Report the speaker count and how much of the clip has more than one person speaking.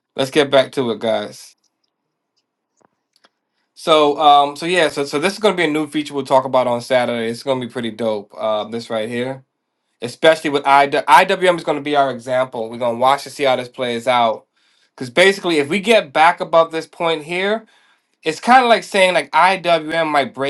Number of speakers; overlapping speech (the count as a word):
one, no overlap